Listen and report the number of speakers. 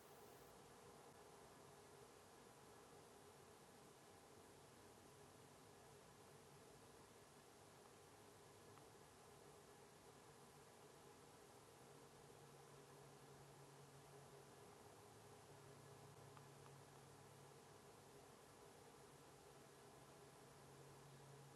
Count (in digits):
0